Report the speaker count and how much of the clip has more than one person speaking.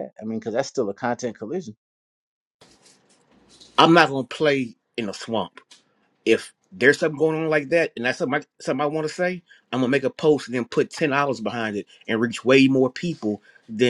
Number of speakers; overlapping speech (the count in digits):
2, no overlap